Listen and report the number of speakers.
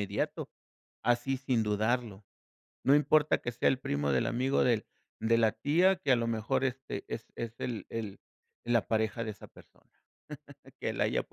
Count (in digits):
1